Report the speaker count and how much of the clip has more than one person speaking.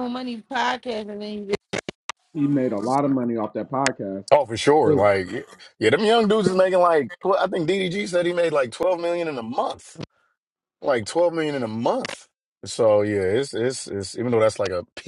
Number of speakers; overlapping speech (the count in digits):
3, about 2%